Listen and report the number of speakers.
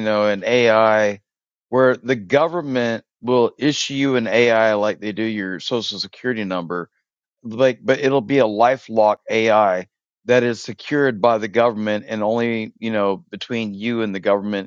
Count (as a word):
one